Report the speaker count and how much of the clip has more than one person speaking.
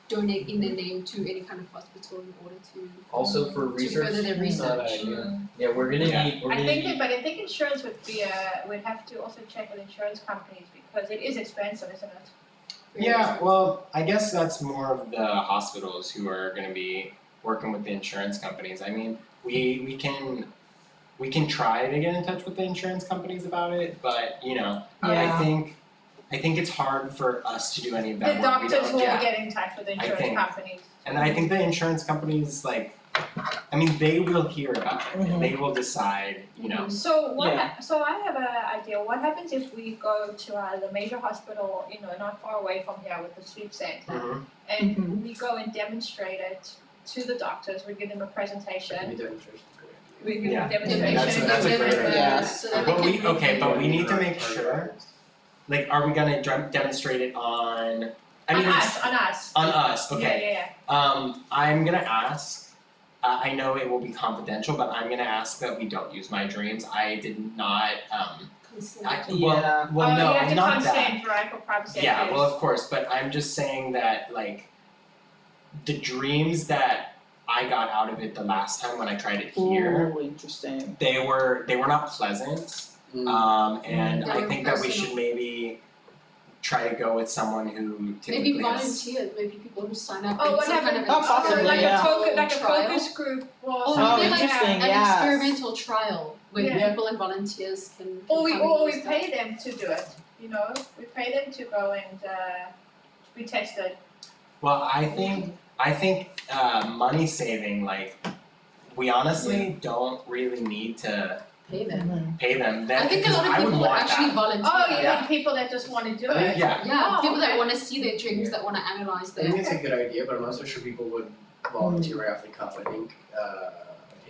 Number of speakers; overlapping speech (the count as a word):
six, about 23%